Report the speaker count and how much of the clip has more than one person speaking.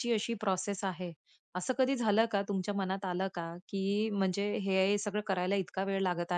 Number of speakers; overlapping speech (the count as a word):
one, no overlap